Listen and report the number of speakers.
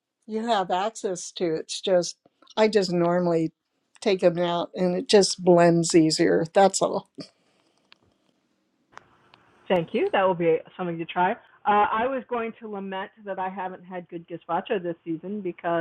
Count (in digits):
2